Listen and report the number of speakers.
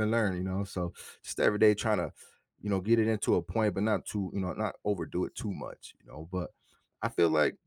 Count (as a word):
one